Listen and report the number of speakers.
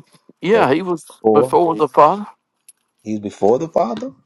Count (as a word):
two